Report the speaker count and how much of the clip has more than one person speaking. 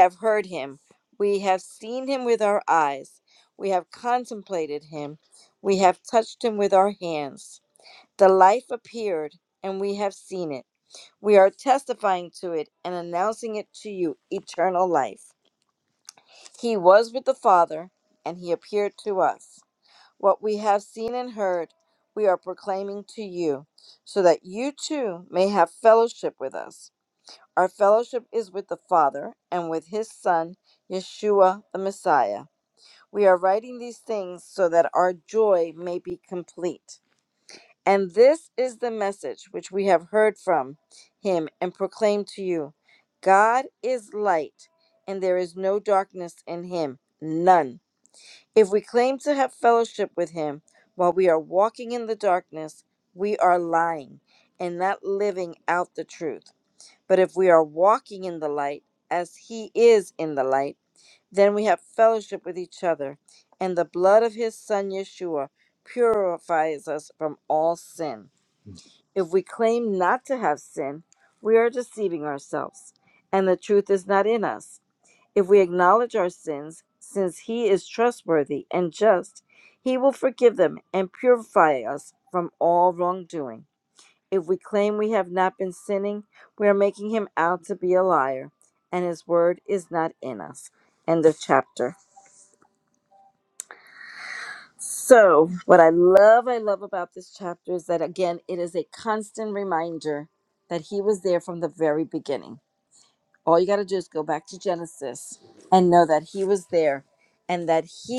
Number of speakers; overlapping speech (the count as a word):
one, no overlap